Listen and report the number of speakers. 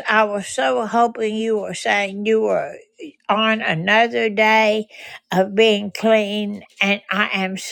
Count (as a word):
one